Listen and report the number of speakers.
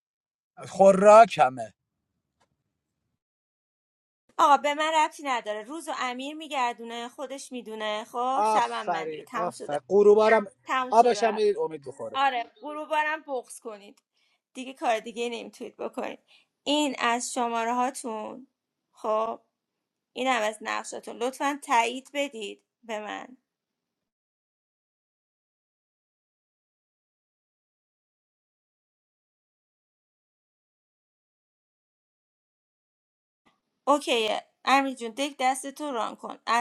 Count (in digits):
2